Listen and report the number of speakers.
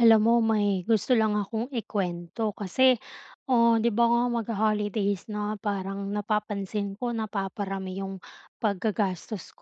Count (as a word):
one